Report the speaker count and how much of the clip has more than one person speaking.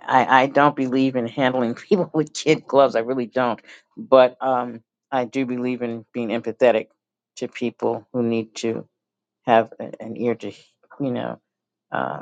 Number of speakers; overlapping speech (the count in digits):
1, no overlap